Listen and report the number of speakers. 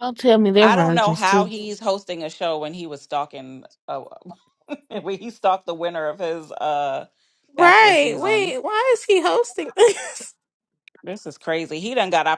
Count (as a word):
three